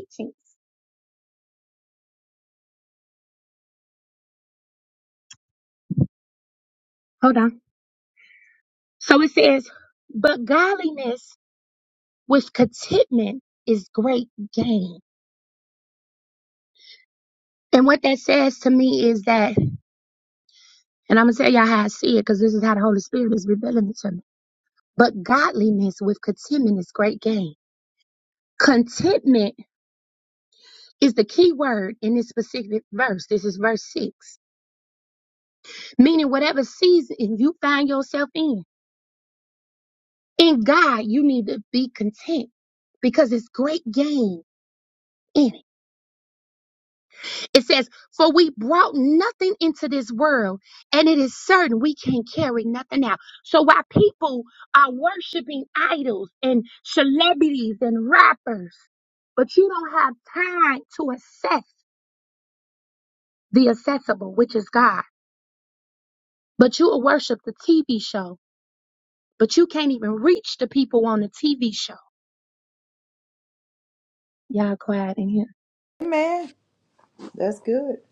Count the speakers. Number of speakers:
2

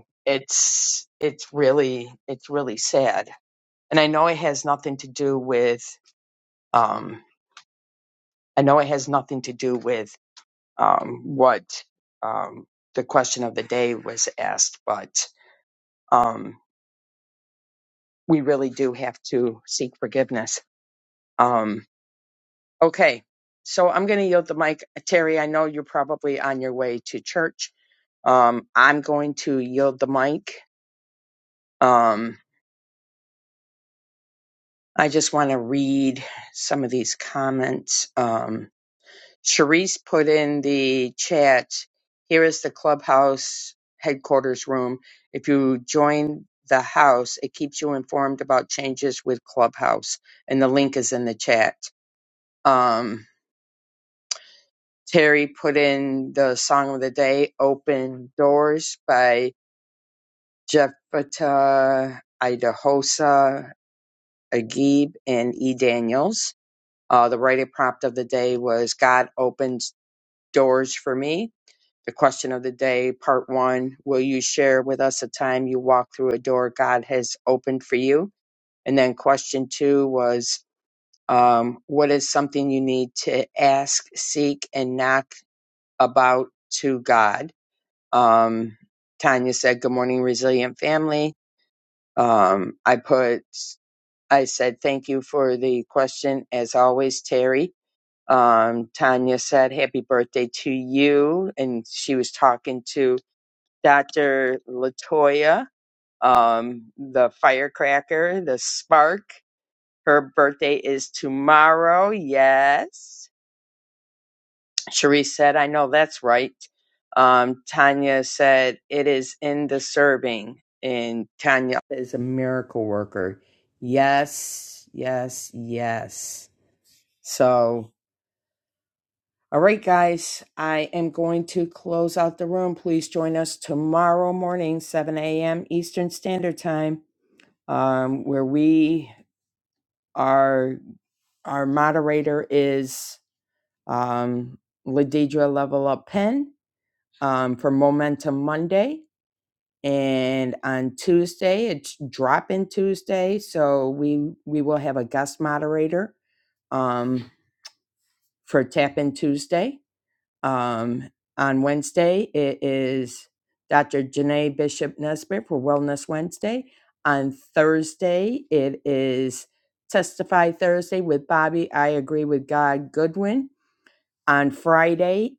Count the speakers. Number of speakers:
1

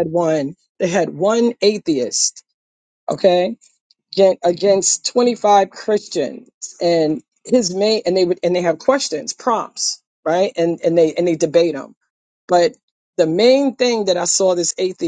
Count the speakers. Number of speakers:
1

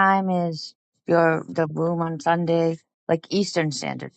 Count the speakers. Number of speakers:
1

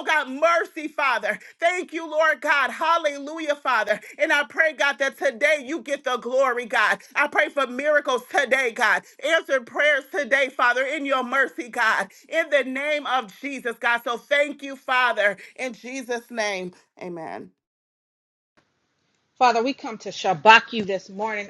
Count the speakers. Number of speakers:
2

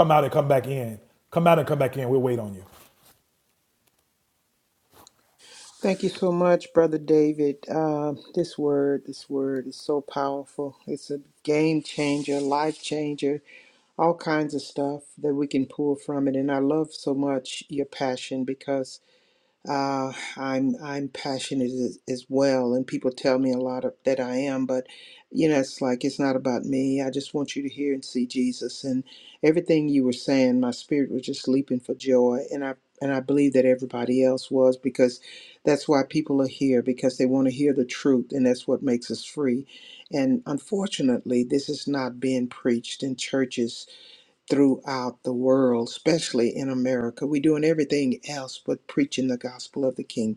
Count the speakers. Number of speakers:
2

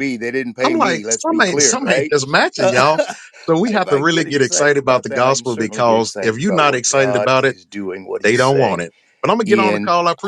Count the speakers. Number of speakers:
2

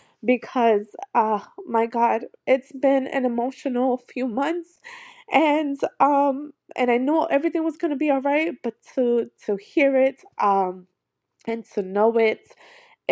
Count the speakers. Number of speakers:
1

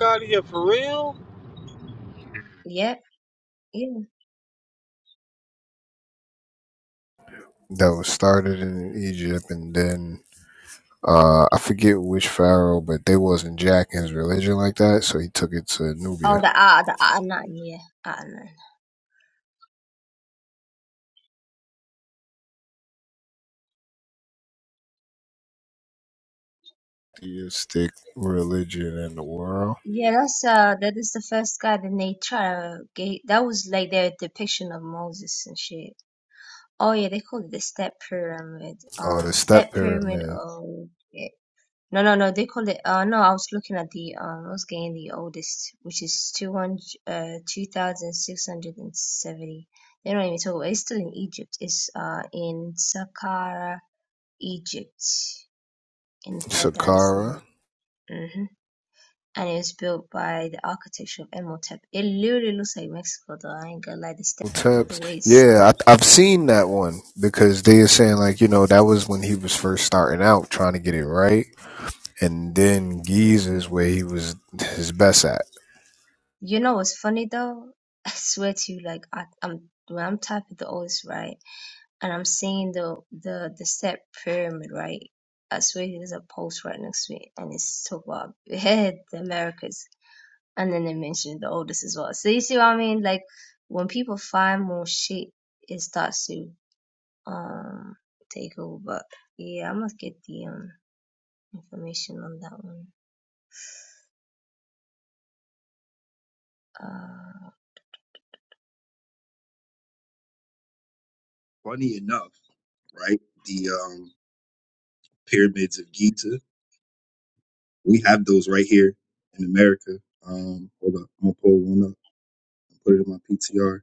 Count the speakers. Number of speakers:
4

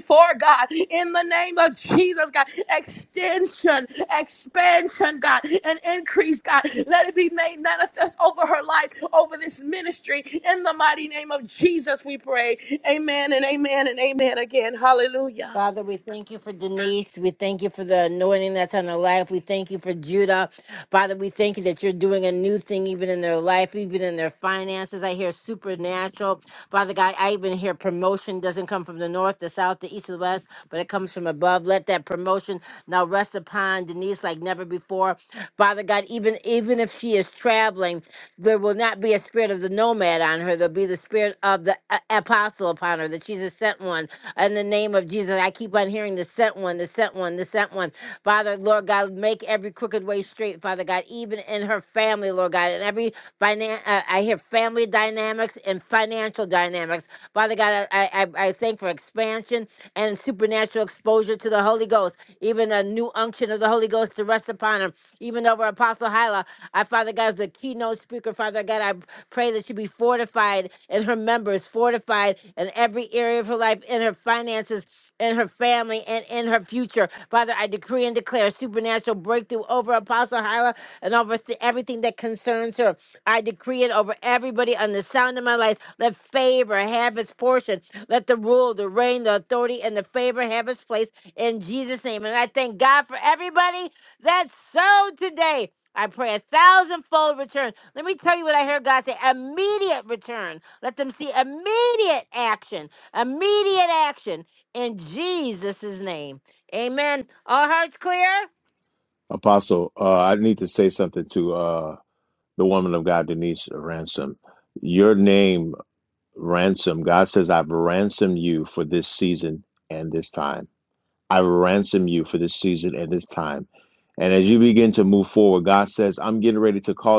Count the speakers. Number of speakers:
3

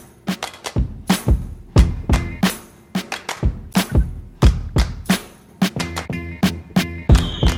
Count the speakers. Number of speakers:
0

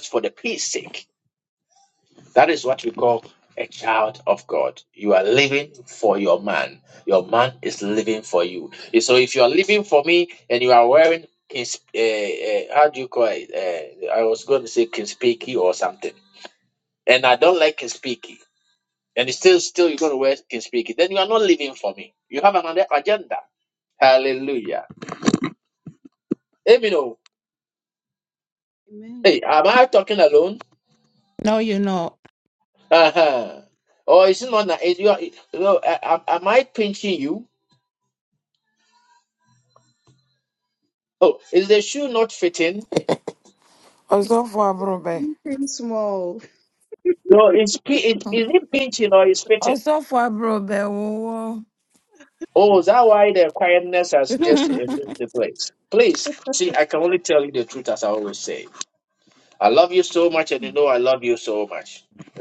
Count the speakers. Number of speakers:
4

